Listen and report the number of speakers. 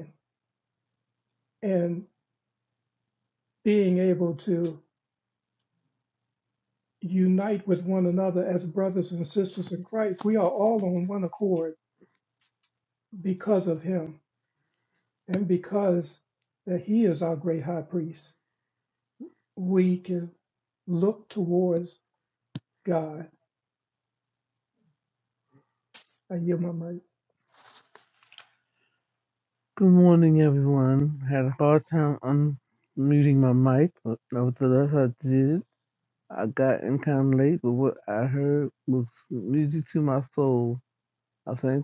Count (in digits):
2